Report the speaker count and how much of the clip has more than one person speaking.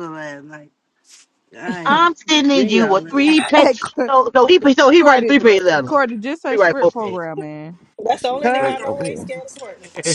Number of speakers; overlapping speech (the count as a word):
four, about 39%